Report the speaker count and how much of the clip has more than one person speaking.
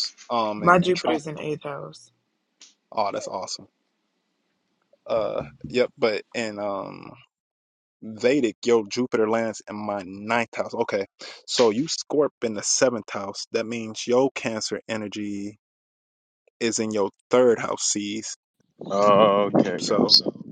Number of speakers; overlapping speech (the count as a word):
three, about 5%